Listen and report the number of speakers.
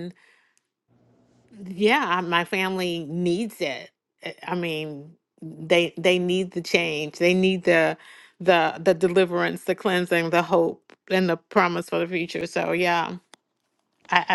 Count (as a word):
one